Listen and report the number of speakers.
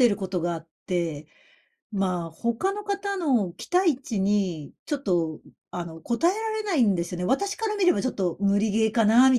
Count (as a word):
one